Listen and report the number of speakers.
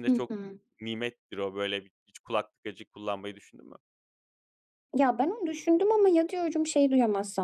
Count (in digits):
2